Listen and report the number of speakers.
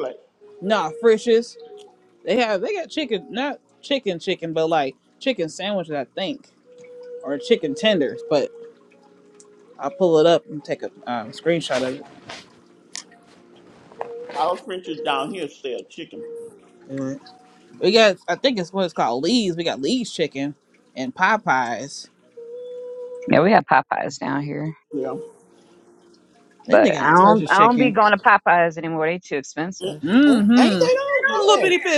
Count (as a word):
three